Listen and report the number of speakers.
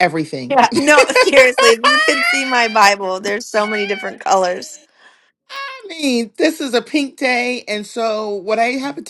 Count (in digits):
2